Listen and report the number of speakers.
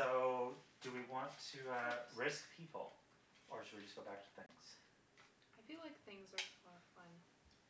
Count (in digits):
2